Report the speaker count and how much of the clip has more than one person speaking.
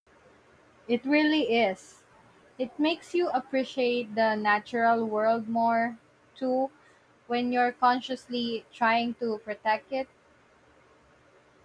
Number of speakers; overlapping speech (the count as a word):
one, no overlap